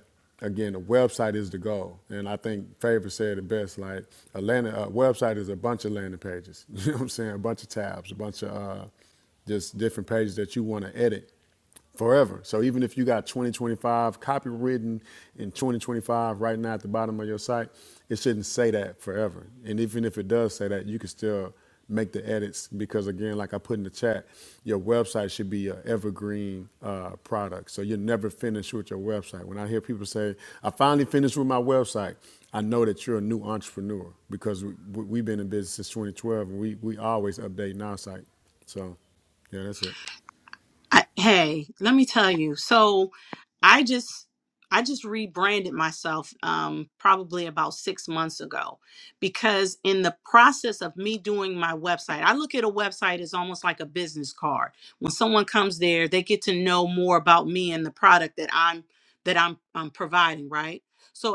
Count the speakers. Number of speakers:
2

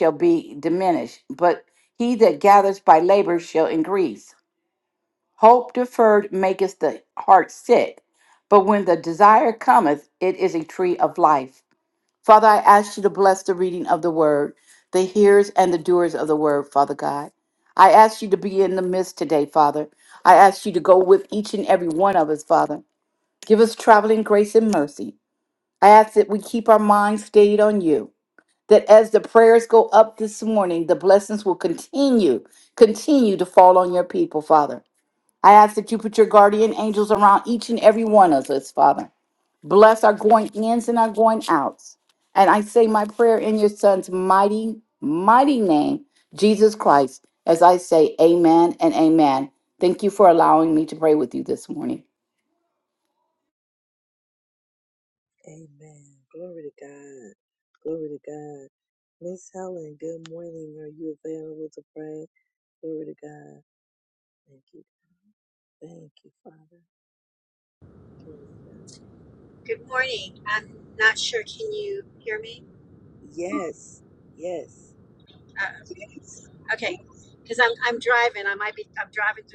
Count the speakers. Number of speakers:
3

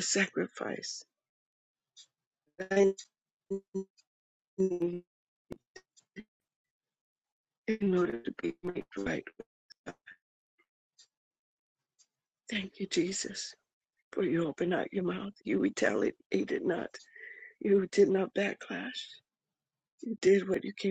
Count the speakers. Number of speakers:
1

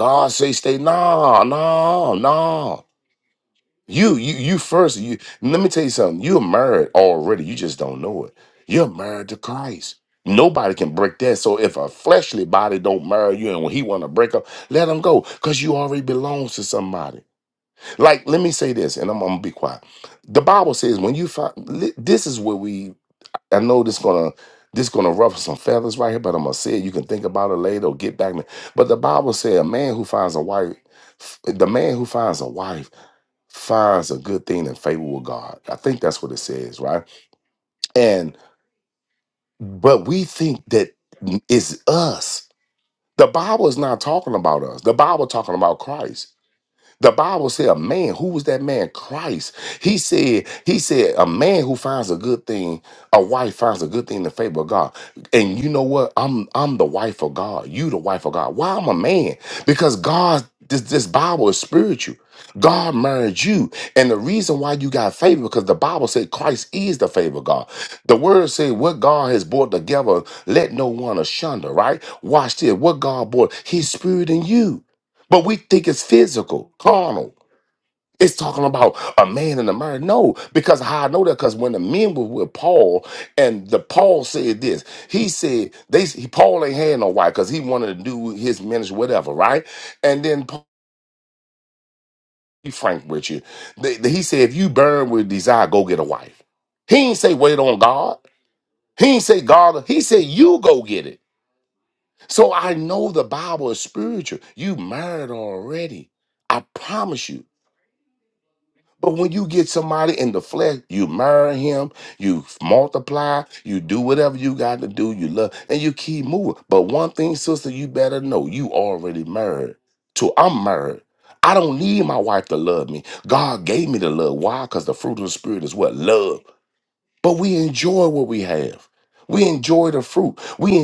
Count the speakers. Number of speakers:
1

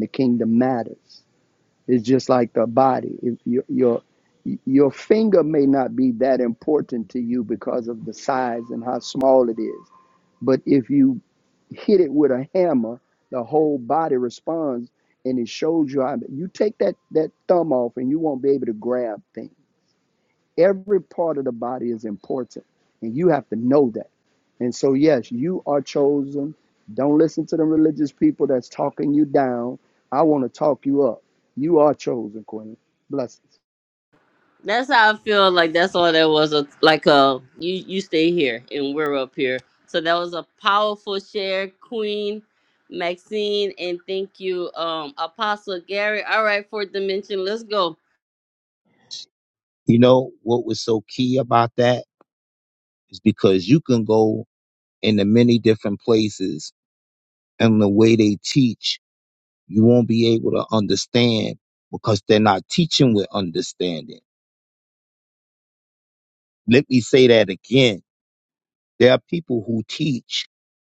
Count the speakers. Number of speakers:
3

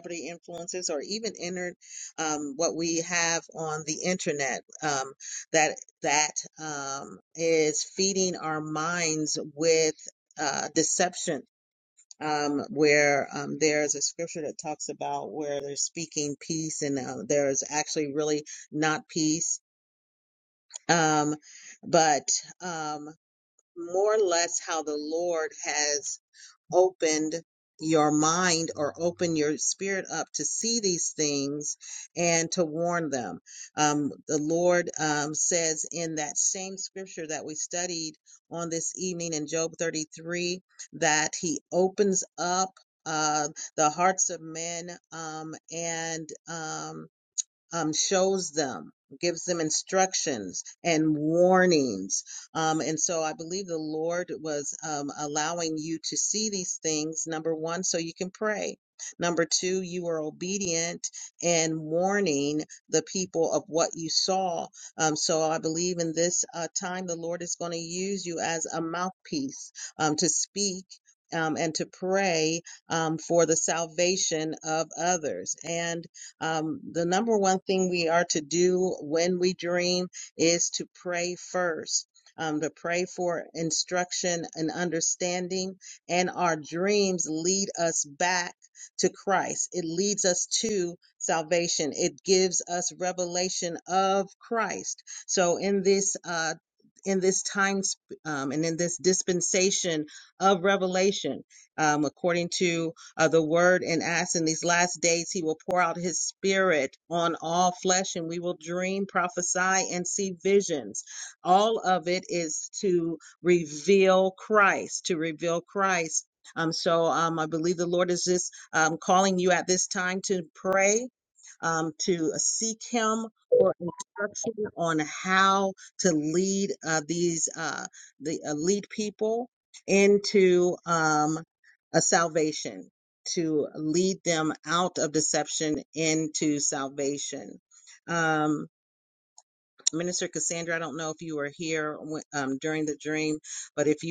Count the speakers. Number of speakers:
1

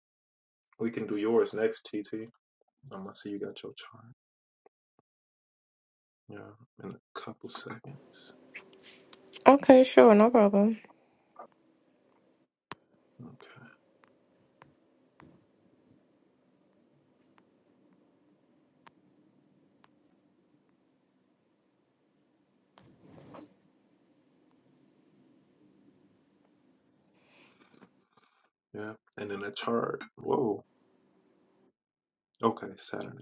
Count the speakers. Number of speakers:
2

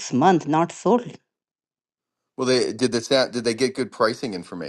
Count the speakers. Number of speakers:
2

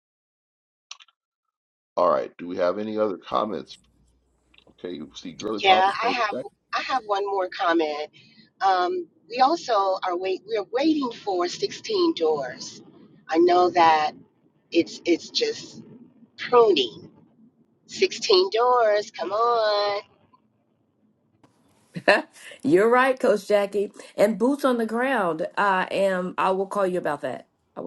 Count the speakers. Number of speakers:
3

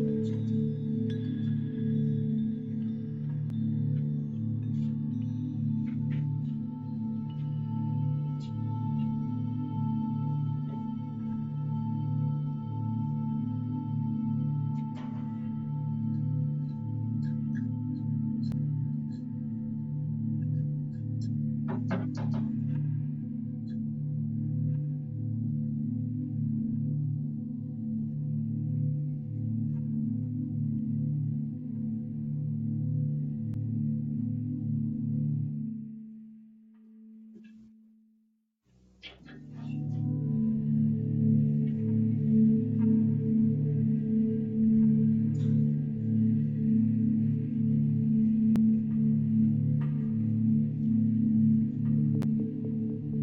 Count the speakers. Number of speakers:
0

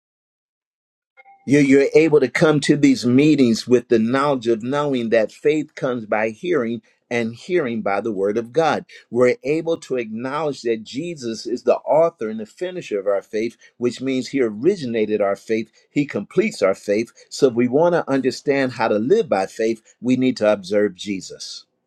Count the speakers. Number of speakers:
1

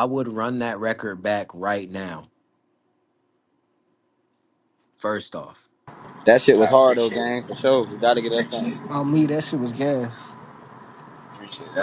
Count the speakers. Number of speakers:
4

